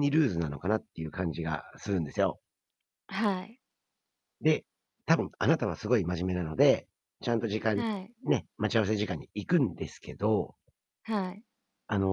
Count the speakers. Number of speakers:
2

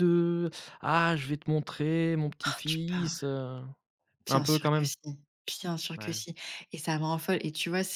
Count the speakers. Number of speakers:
2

